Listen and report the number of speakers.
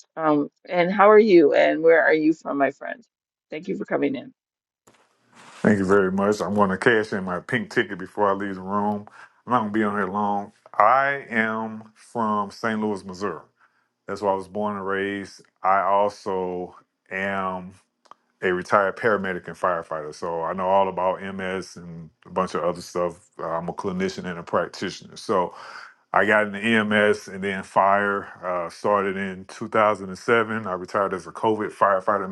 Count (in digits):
2